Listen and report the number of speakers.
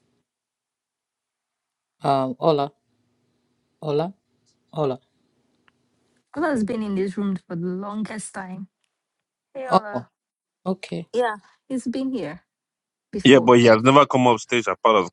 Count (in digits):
3